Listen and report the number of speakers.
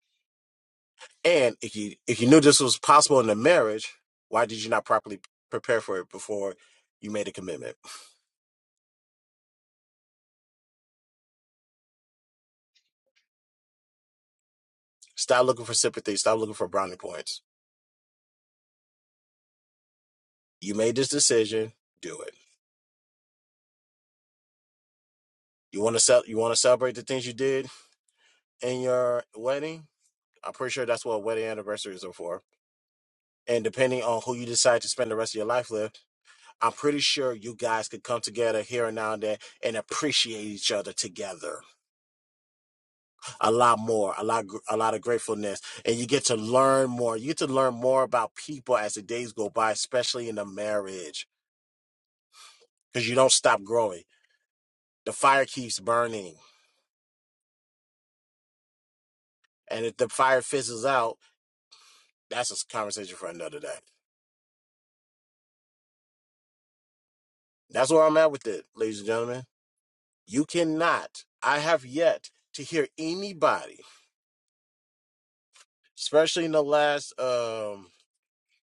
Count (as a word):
one